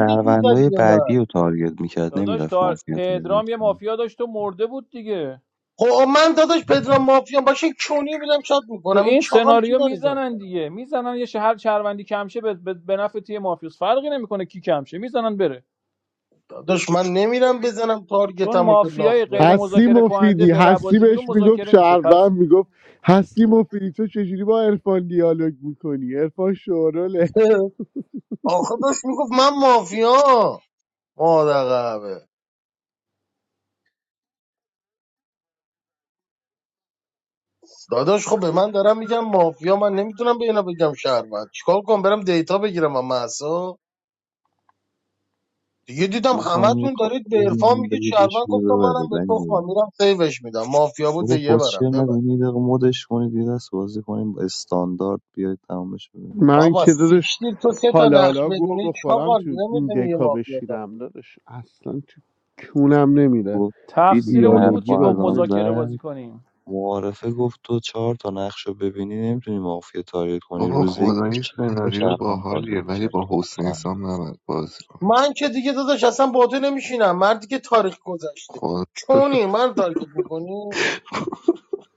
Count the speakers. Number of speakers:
5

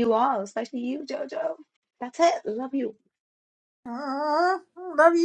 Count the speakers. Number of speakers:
2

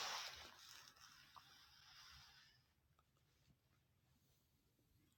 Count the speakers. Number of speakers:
0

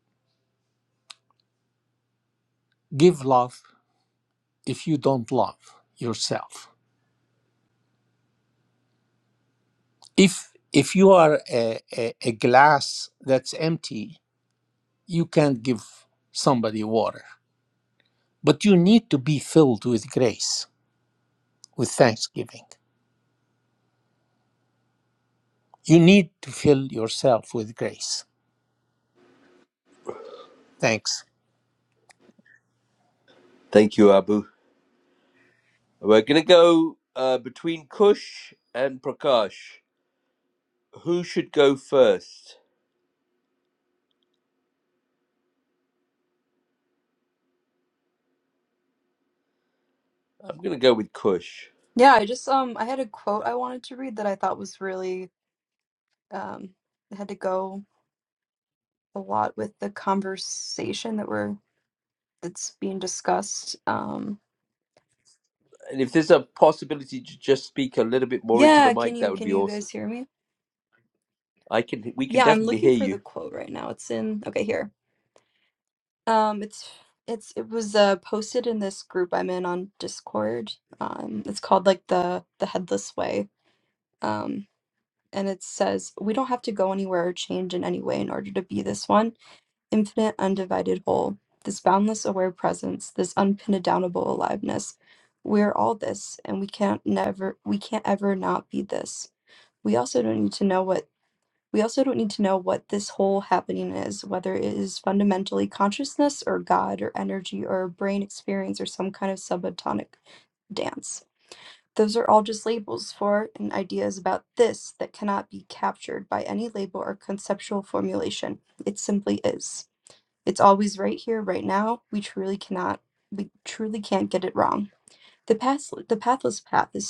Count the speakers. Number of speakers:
3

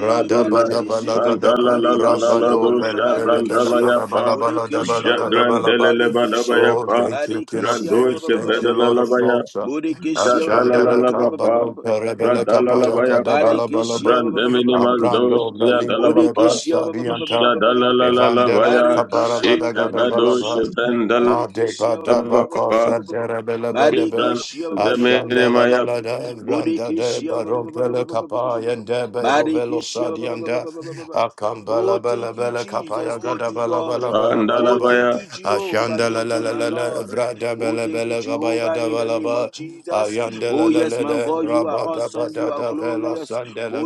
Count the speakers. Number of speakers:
3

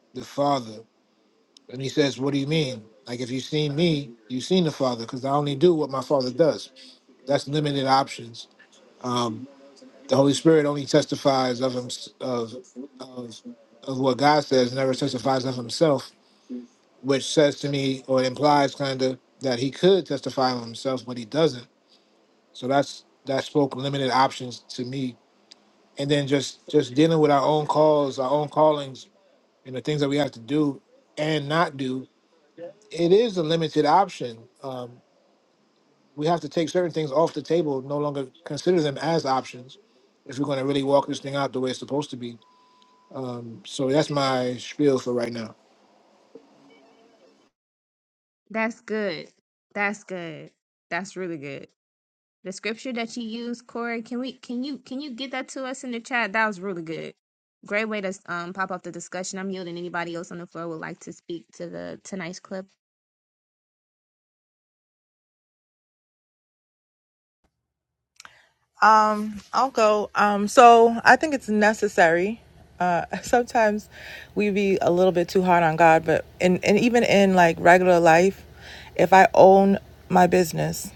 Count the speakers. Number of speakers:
3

